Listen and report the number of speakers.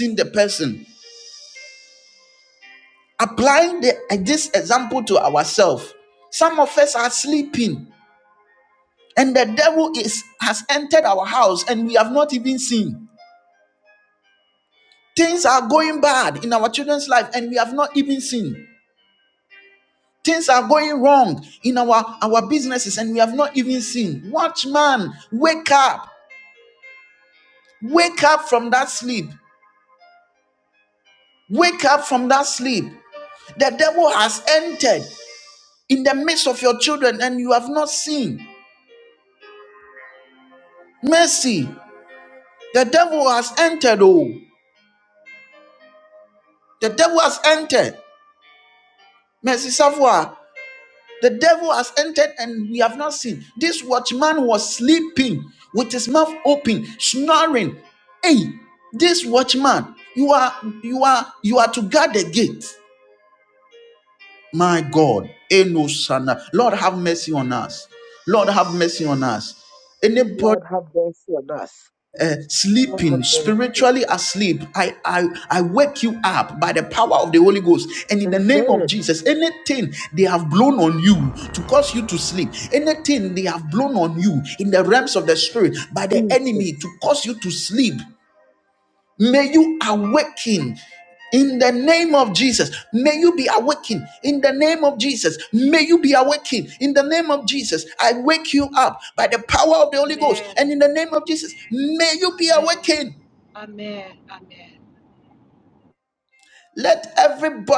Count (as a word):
three